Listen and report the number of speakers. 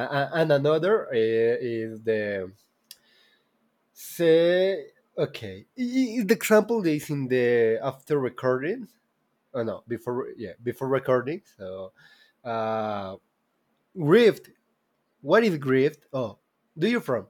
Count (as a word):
one